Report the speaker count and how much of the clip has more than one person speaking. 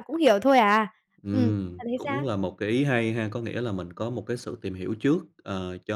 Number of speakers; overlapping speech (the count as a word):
two, about 15%